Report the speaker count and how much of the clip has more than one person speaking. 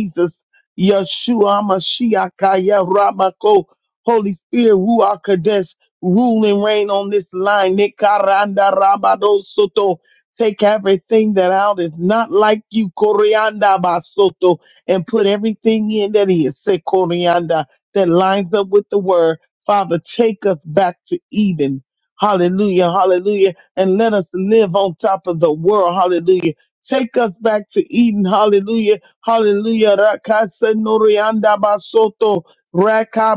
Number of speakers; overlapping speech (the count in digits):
1, no overlap